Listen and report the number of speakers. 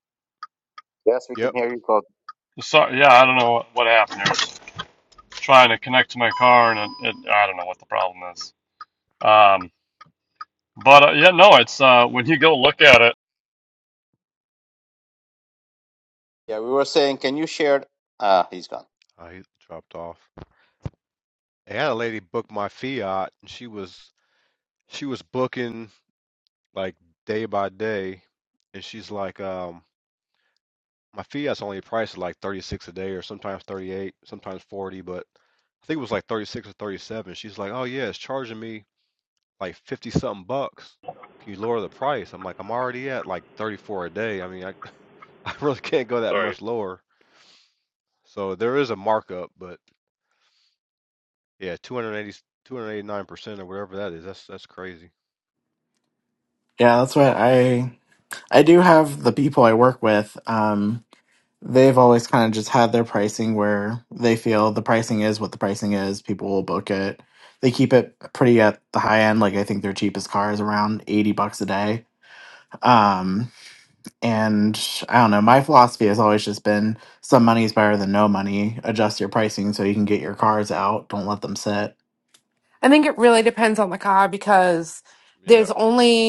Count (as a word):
five